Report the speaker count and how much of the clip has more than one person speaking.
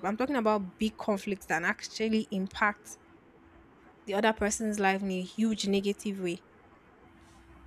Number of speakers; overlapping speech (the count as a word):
one, no overlap